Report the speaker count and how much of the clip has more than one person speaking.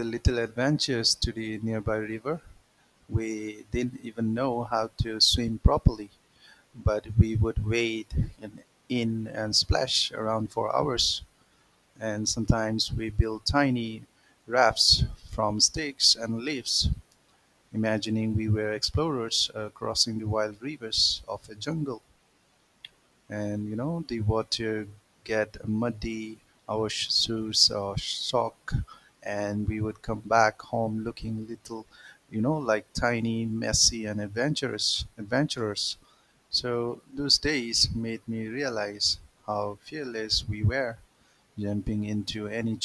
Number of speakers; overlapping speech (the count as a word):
one, no overlap